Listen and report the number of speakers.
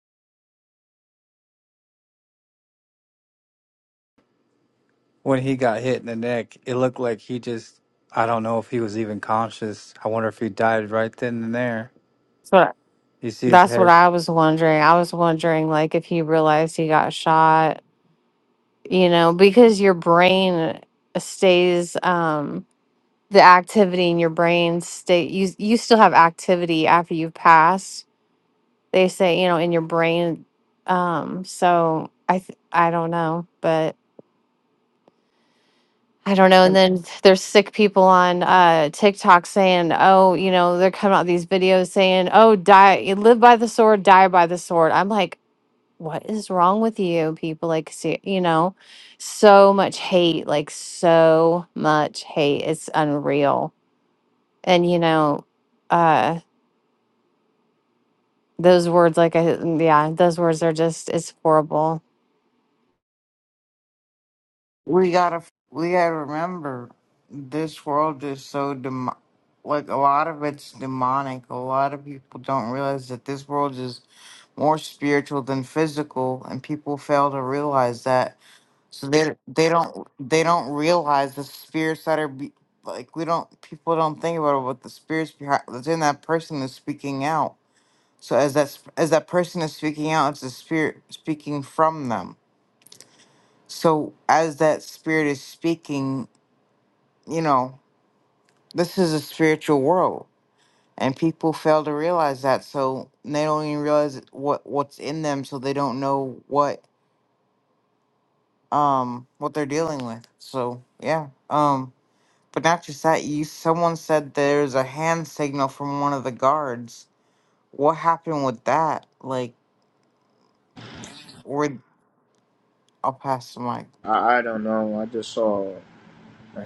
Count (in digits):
4